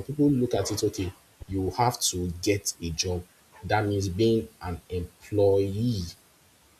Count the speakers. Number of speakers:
one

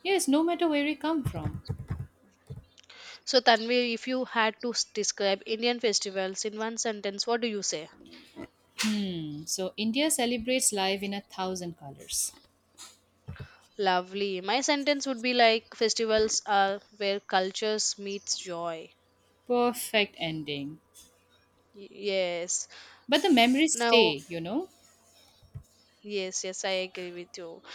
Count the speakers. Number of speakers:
two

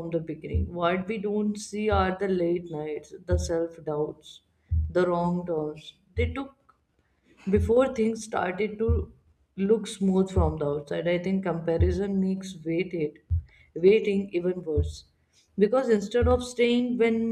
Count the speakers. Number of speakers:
one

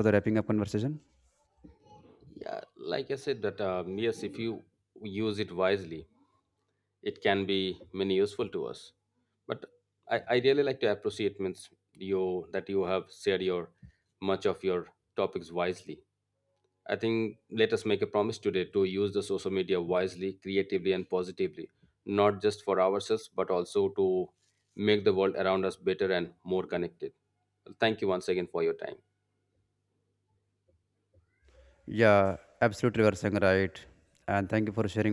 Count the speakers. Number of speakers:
two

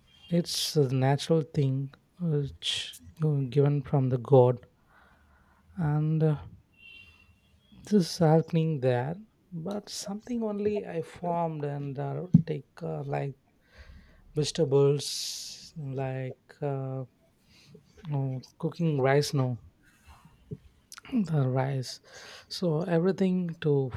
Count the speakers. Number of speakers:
one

